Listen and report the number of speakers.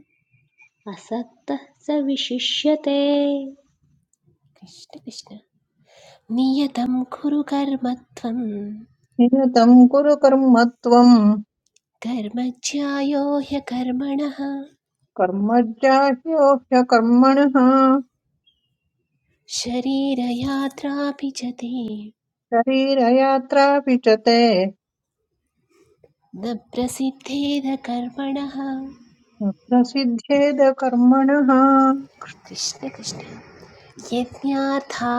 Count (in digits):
3